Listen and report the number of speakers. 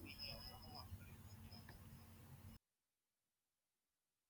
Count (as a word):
zero